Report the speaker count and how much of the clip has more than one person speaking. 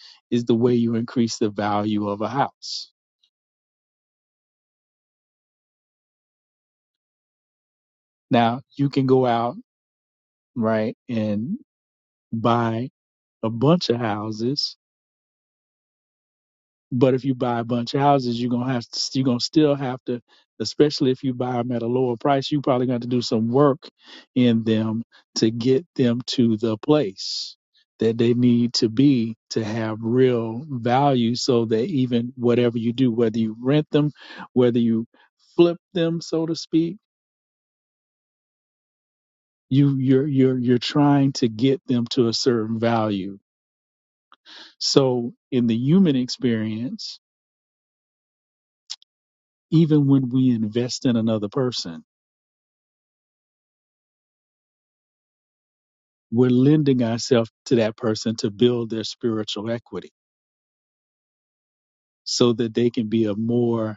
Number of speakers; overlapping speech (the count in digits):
1, no overlap